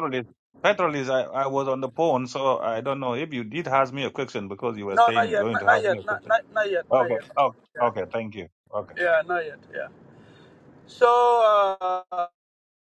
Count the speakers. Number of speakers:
2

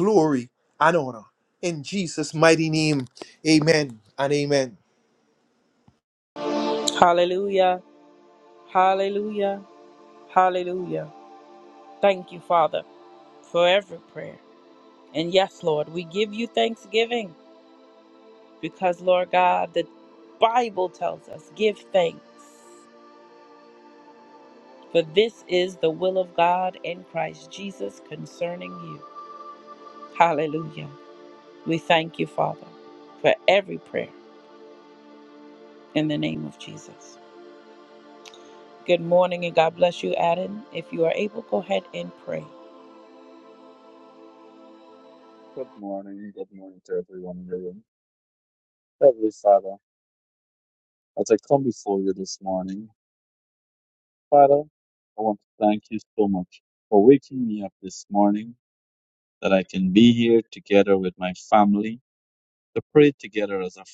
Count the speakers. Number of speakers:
3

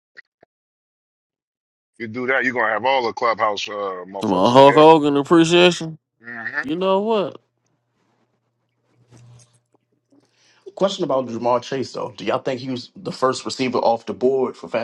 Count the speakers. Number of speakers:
3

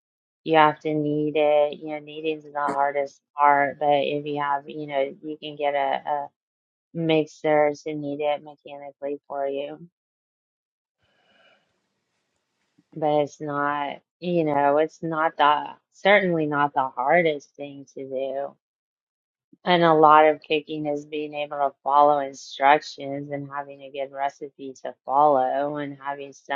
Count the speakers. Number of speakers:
1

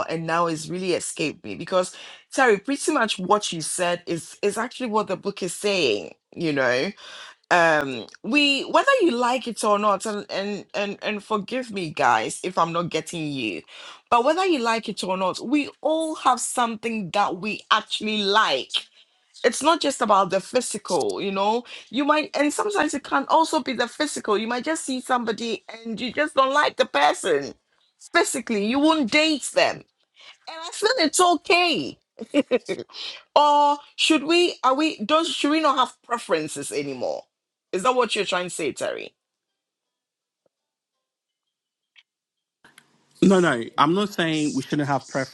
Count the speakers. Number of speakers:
2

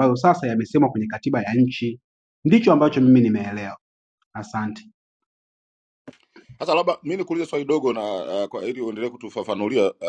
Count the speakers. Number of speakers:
2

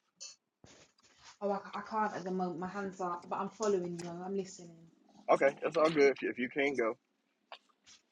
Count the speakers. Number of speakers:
2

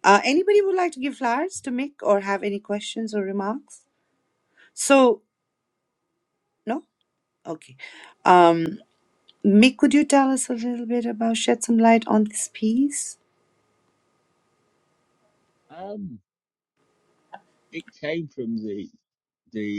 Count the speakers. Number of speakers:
2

